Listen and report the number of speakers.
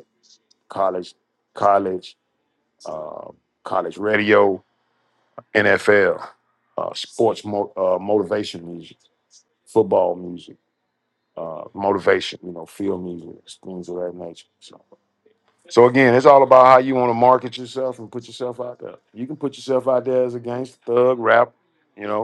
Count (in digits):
1